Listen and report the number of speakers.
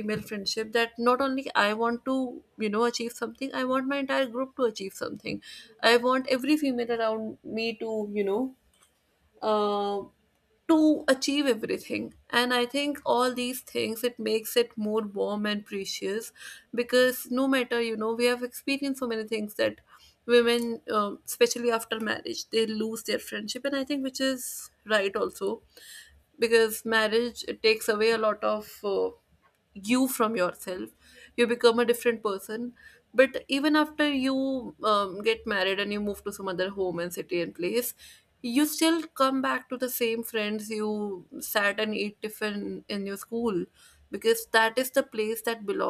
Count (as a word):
one